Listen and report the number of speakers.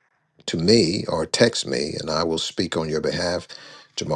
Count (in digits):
1